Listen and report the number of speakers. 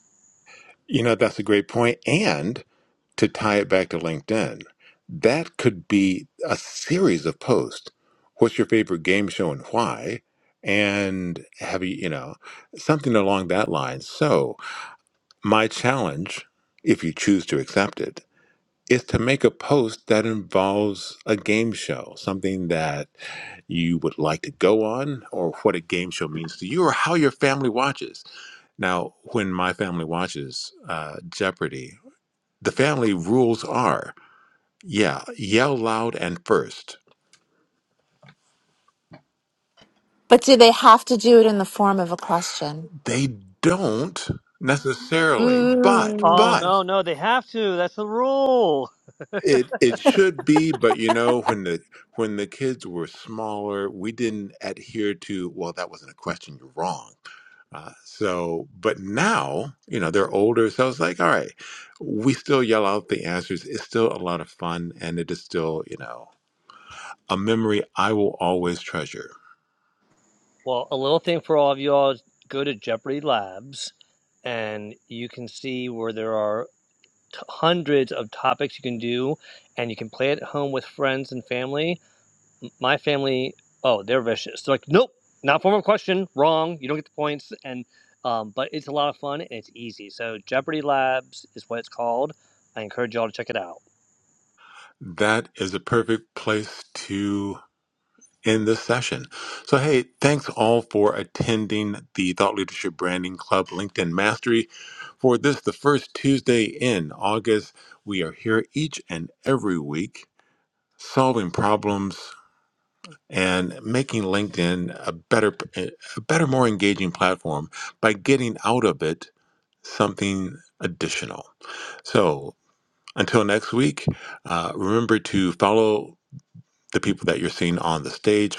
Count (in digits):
3